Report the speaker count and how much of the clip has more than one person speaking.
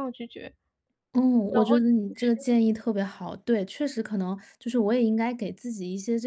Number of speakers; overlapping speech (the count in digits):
2, about 18%